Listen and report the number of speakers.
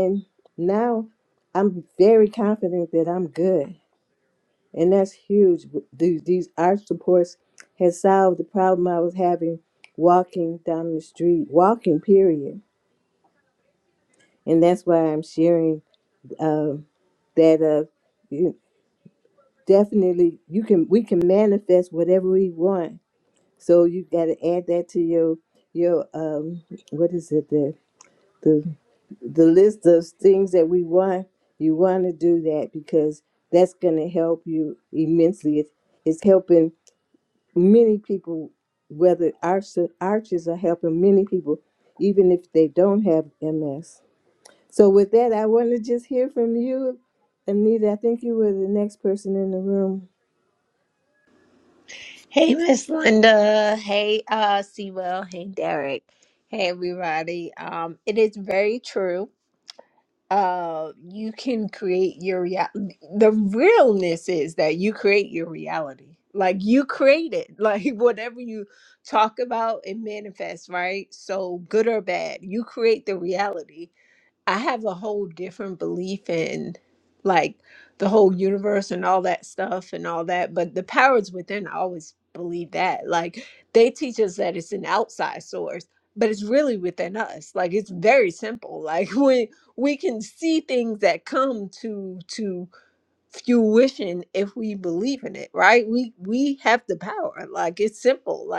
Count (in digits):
2